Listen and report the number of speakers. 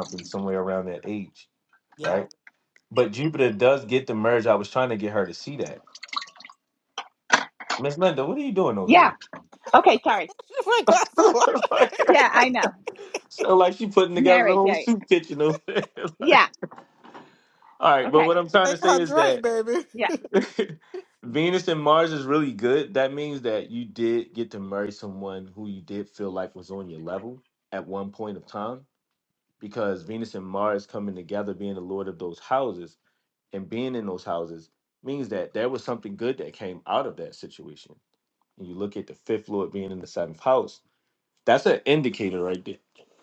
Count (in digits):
3